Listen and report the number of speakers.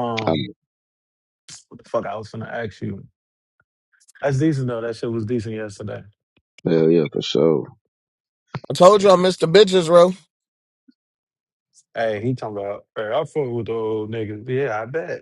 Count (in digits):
3